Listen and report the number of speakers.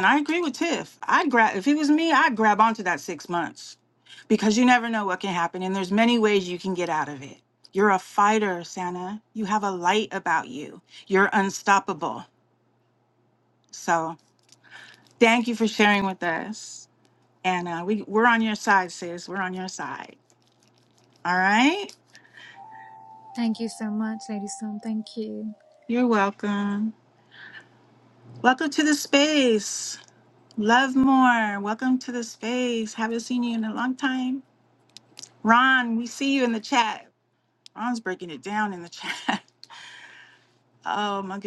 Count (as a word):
two